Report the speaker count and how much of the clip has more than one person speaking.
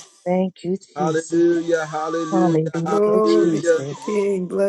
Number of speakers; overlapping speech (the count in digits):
3, about 45%